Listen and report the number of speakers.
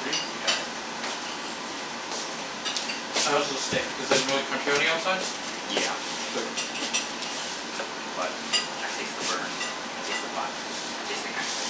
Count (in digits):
2